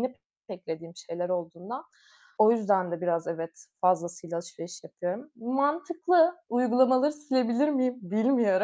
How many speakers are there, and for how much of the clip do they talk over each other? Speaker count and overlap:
1, no overlap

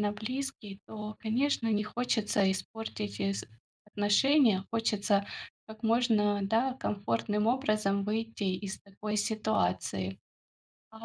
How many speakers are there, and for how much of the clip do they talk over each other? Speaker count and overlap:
1, no overlap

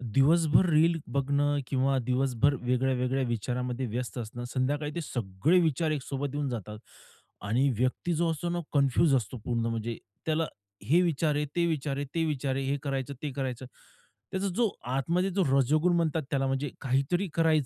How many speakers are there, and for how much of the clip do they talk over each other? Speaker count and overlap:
1, no overlap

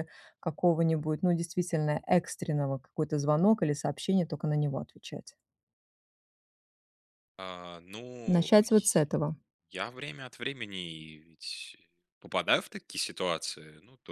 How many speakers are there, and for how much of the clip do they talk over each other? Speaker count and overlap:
2, about 5%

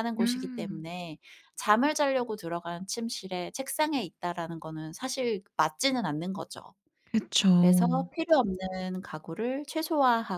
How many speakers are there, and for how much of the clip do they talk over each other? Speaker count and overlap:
2, about 9%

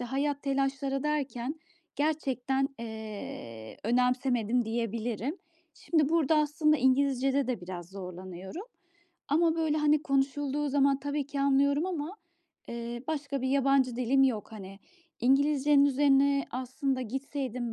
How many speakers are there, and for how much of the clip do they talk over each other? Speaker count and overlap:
1, no overlap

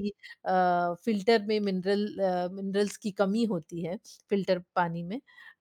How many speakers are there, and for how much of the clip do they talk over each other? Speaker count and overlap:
1, no overlap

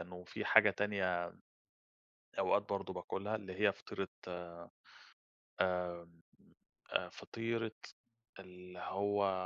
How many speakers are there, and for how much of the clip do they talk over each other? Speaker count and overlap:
1, no overlap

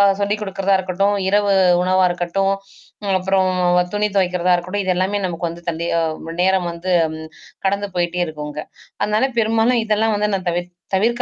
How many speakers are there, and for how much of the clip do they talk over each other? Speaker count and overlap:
1, no overlap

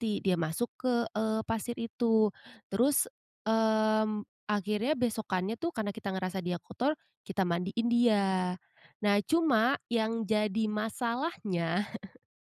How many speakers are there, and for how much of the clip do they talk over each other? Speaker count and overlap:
1, no overlap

